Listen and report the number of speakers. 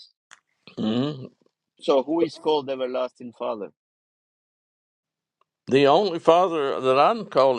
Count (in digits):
2